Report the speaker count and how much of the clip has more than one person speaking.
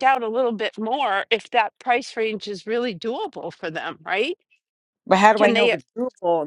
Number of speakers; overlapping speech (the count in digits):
2, about 6%